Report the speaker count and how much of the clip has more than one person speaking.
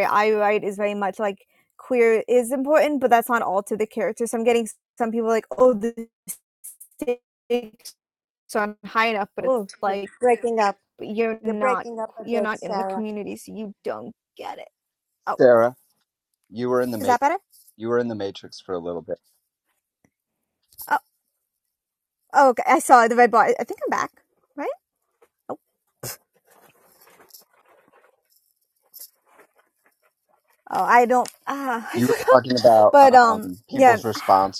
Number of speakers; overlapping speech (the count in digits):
3, about 9%